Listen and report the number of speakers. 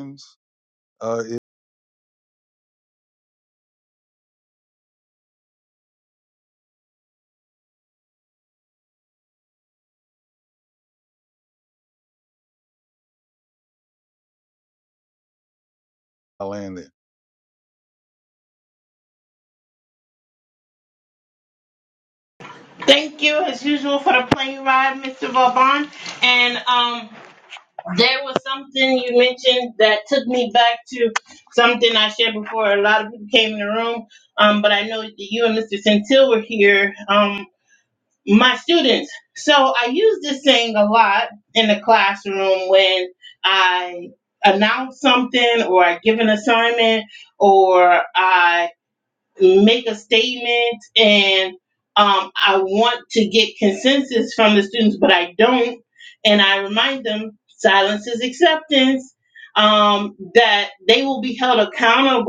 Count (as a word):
two